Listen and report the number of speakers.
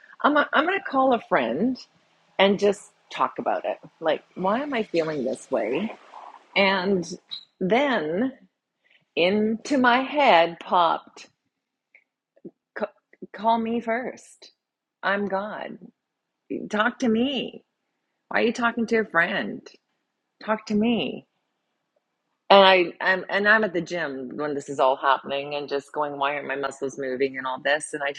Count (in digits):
1